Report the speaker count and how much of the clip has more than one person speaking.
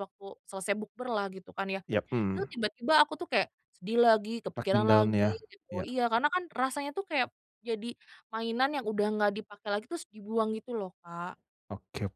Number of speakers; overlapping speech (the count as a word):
two, about 8%